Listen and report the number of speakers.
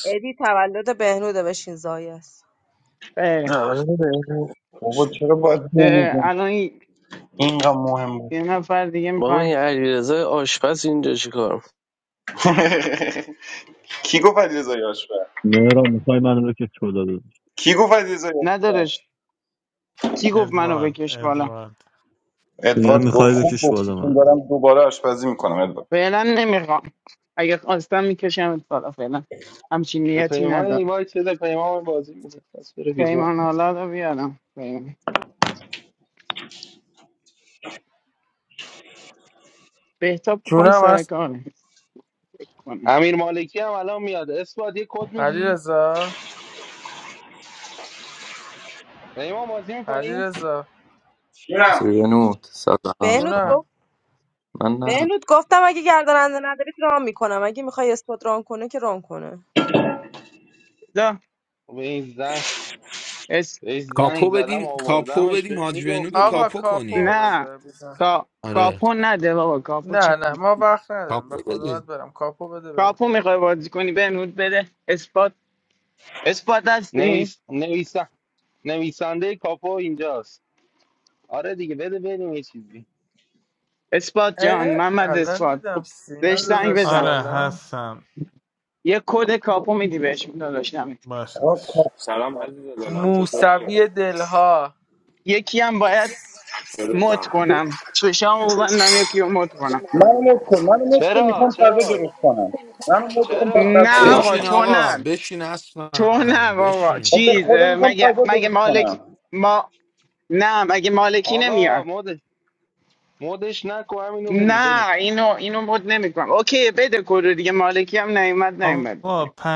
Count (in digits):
11